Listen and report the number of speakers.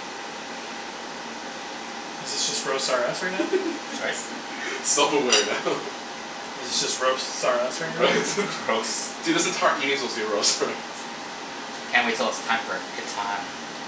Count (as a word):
three